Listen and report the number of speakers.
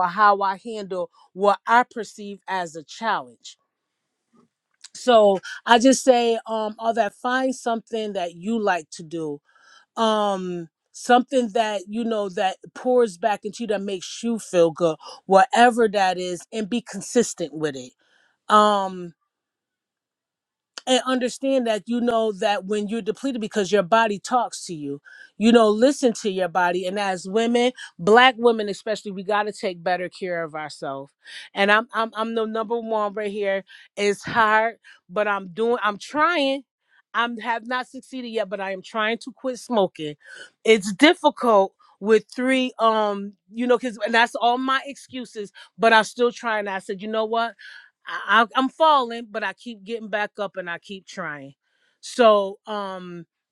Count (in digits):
1